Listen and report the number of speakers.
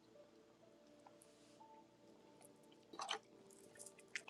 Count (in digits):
0